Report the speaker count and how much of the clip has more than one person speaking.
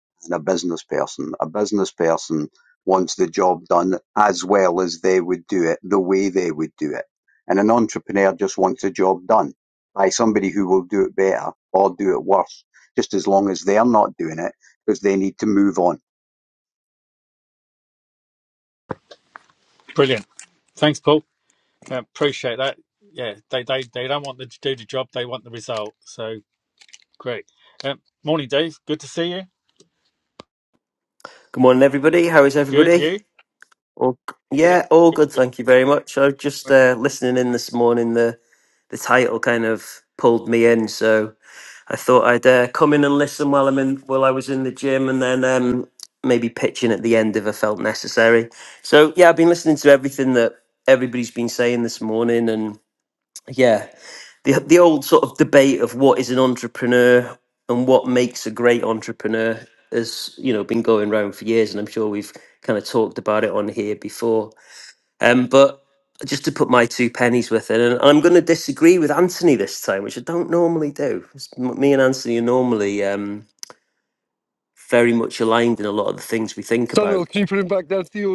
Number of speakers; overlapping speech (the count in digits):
4, about 1%